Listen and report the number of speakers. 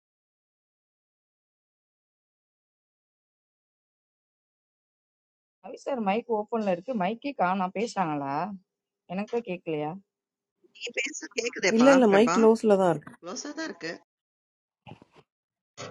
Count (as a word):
three